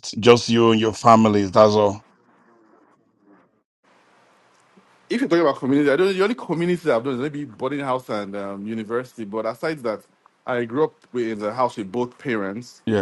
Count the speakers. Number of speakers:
2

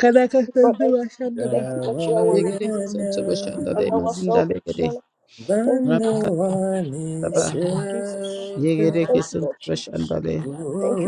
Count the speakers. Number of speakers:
3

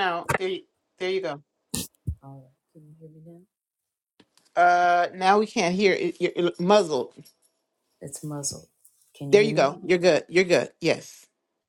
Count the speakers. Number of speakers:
2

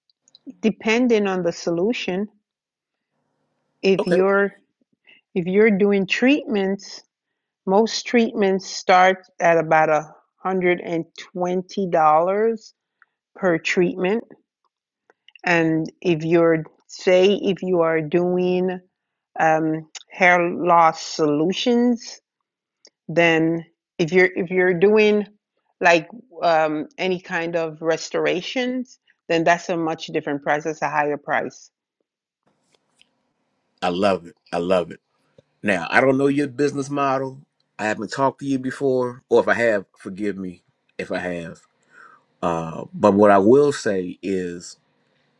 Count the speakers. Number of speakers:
2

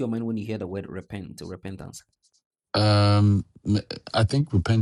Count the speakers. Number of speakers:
2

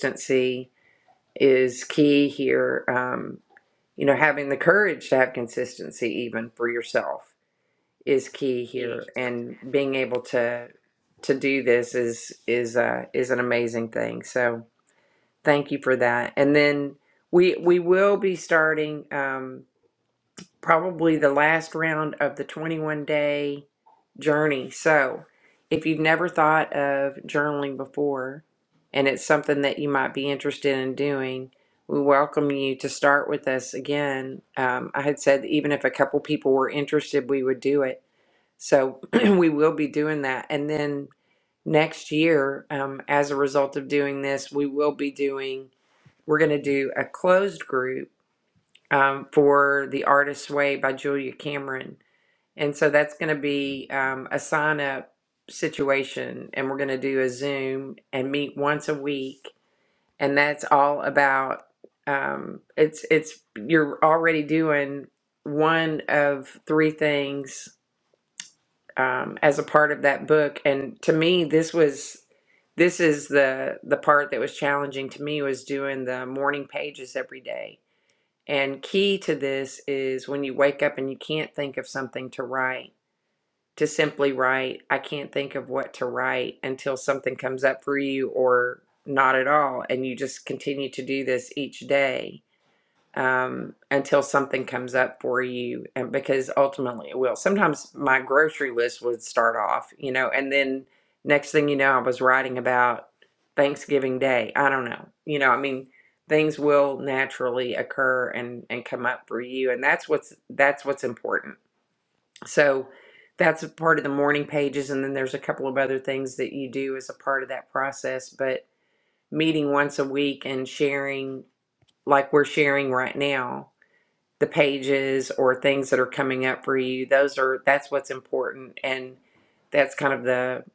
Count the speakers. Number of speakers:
1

